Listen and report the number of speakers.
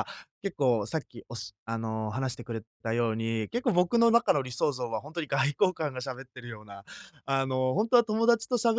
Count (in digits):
1